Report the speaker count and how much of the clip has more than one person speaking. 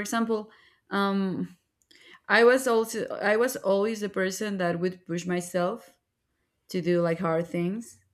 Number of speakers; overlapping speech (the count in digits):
1, no overlap